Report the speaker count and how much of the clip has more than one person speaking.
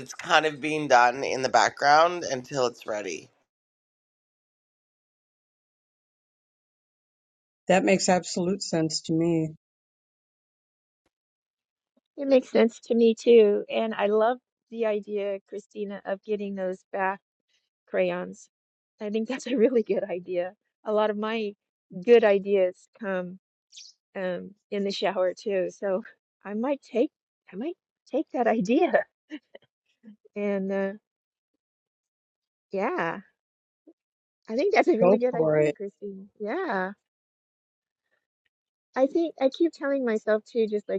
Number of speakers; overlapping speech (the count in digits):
3, about 2%